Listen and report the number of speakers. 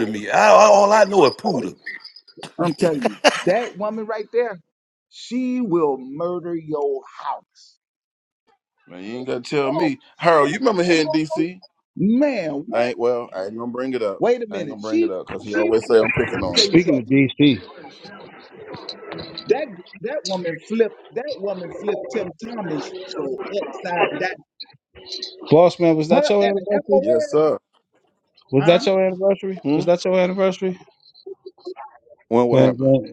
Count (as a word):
four